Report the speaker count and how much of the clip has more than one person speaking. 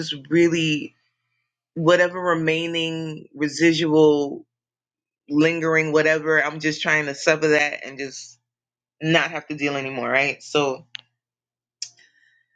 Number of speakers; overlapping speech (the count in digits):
1, no overlap